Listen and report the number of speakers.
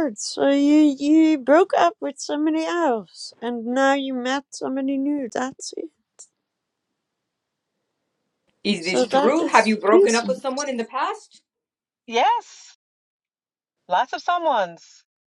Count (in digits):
3